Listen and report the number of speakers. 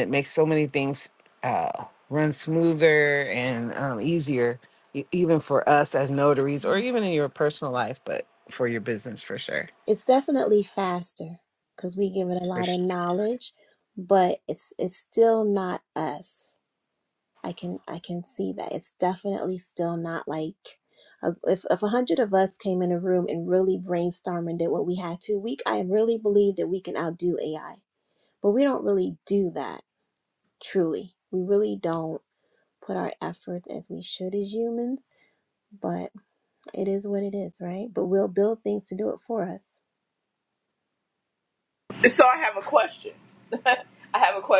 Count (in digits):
3